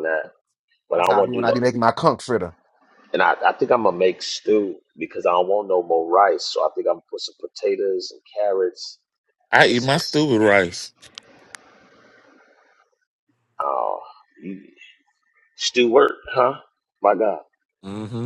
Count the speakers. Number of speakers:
three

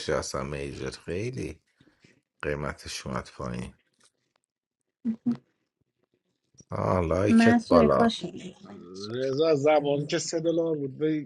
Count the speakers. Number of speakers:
three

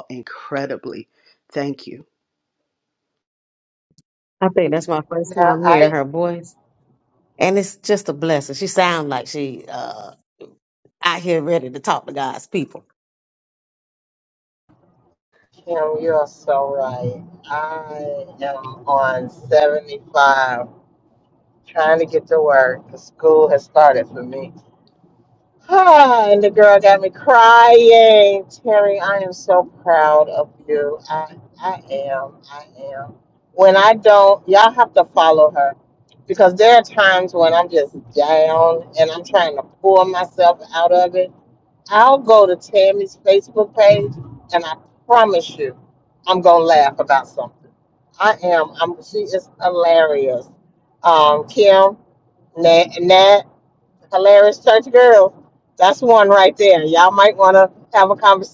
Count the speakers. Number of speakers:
three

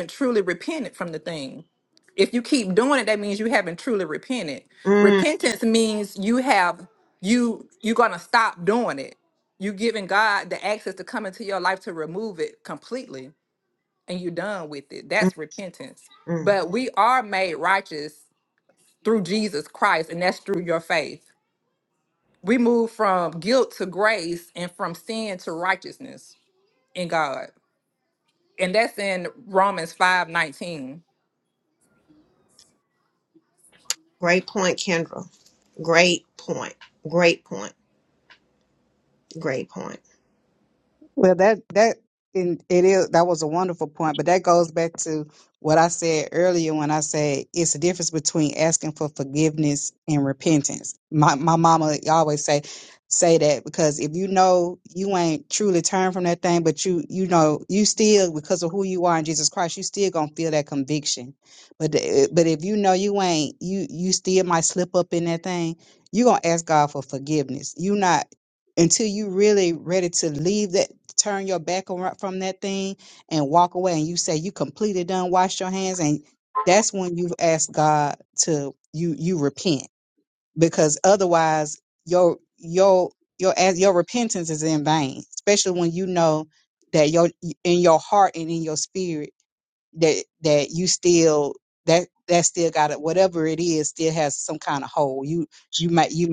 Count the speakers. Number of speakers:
three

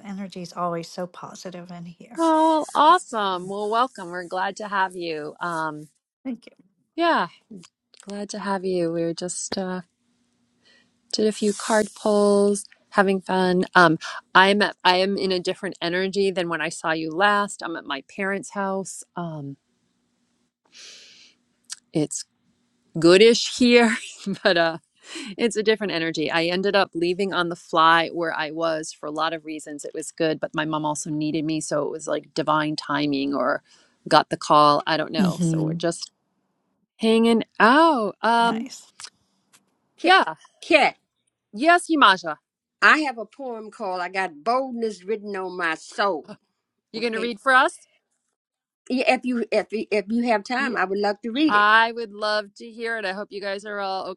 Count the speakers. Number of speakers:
three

